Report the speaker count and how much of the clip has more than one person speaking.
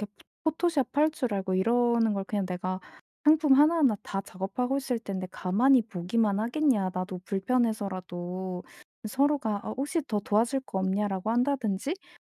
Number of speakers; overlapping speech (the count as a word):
one, no overlap